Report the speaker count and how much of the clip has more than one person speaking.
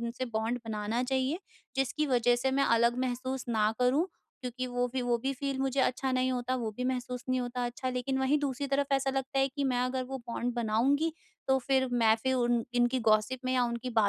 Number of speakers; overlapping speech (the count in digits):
1, no overlap